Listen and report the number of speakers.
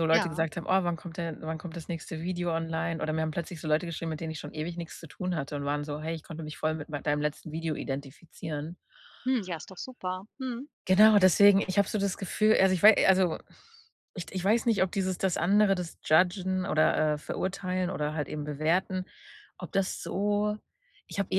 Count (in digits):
2